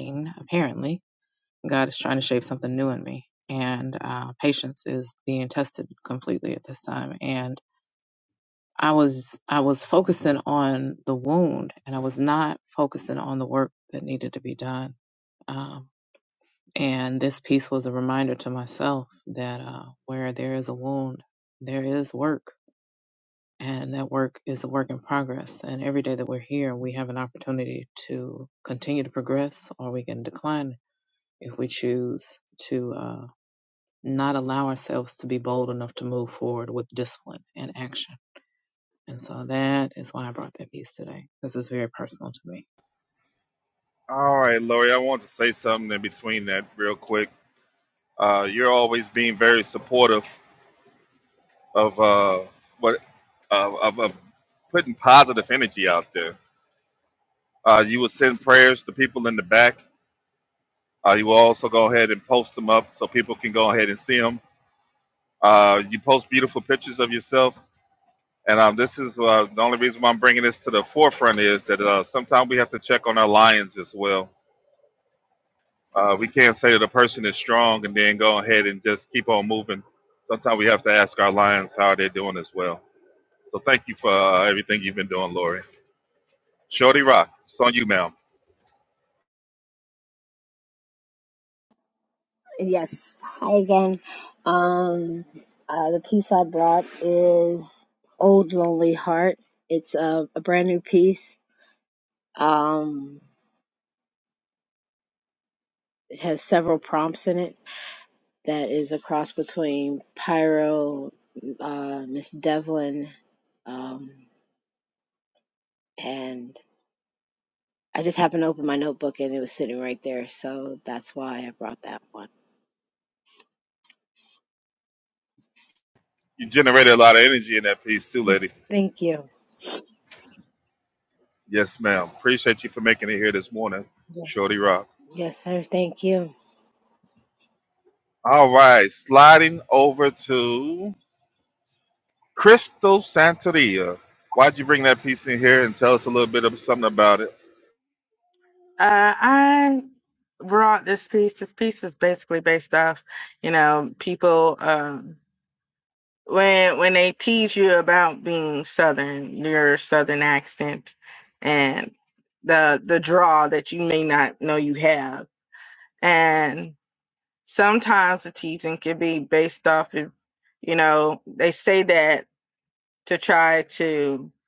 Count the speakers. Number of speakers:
4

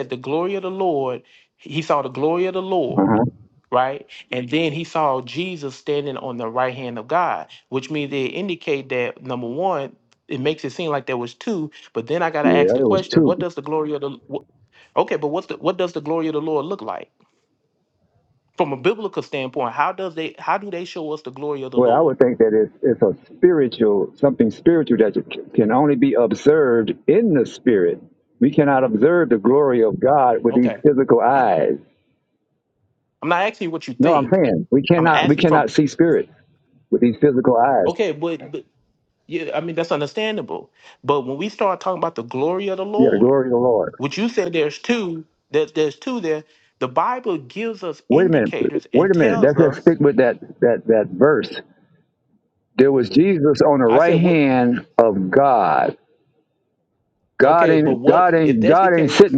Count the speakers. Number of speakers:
2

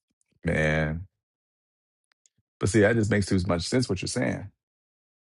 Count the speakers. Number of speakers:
1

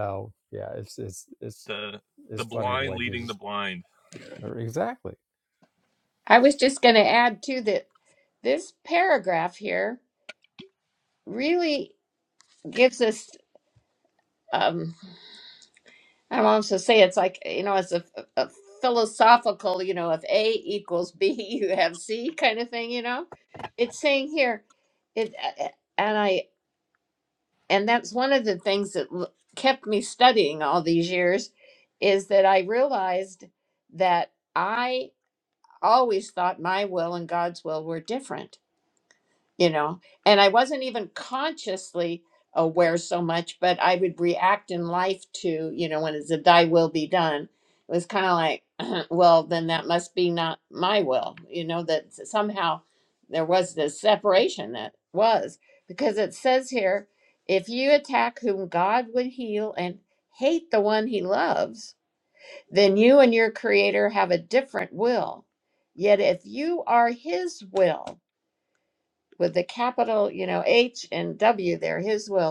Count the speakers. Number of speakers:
3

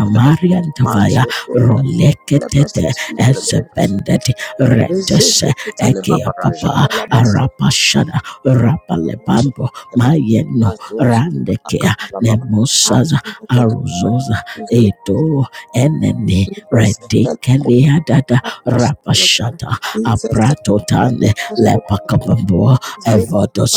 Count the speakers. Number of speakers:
2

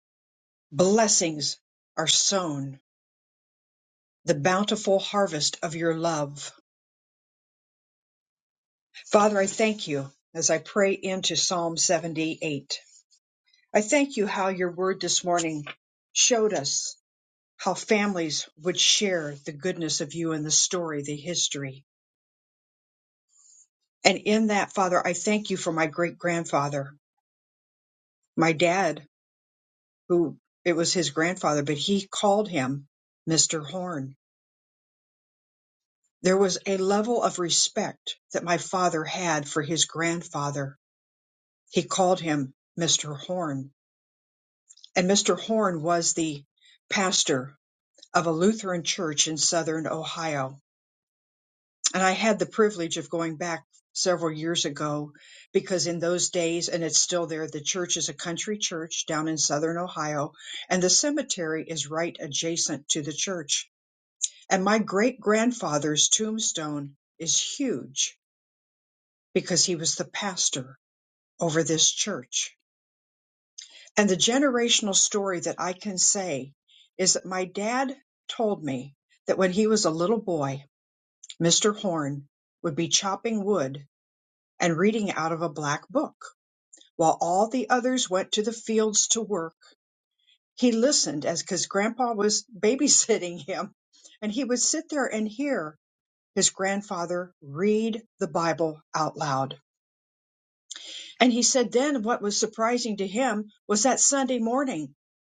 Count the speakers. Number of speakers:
1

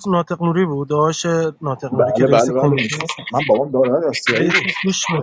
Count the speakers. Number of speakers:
2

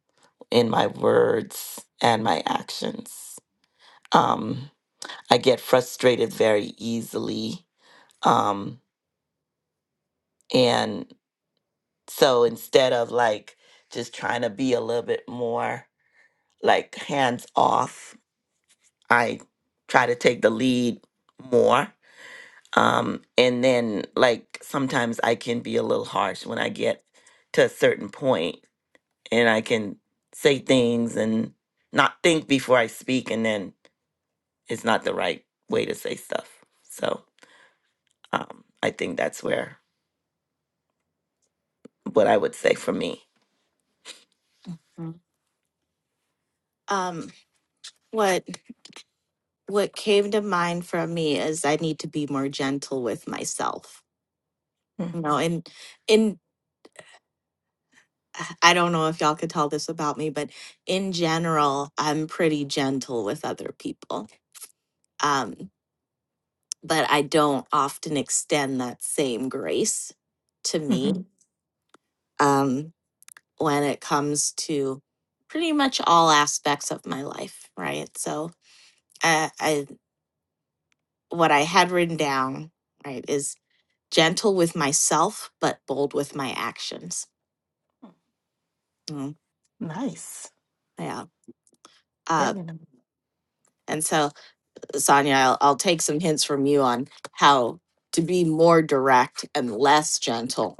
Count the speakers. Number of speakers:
2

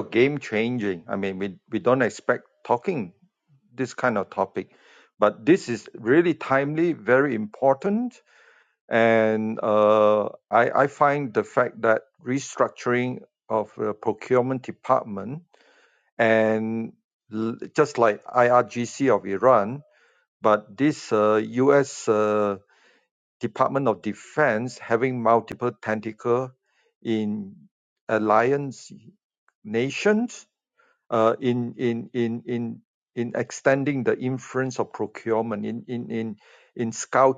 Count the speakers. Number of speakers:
1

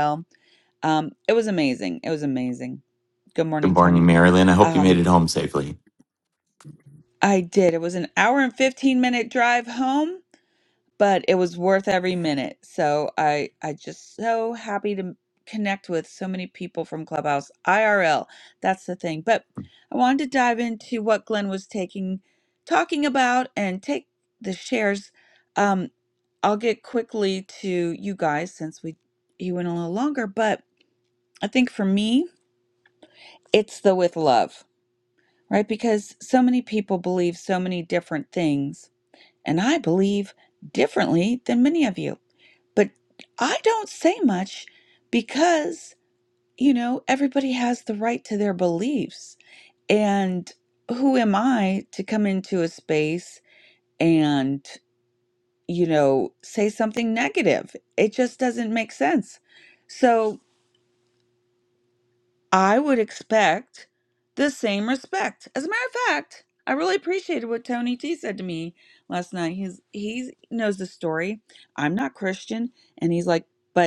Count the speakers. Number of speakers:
2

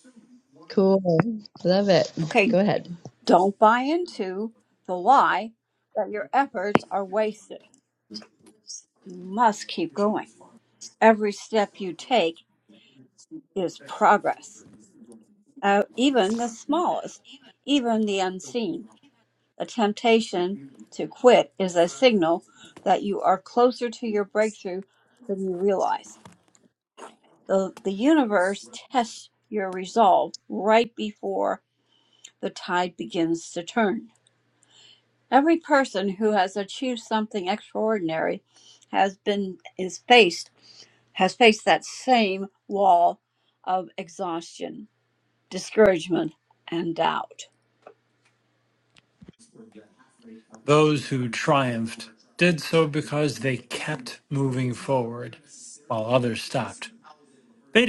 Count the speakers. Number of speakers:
3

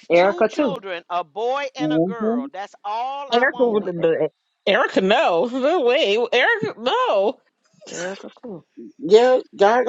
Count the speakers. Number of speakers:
4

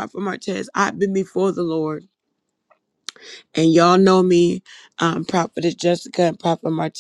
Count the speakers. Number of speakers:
1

